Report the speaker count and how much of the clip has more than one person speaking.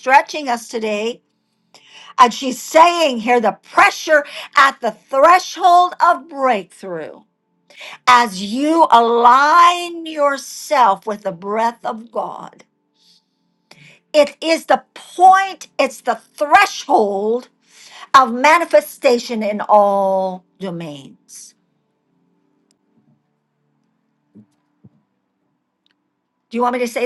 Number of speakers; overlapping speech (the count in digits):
1, no overlap